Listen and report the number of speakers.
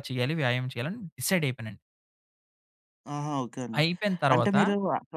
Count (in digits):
2